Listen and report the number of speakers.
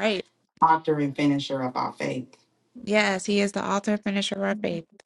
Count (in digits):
2